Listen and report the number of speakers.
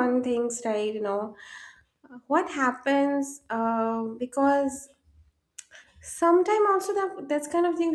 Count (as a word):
one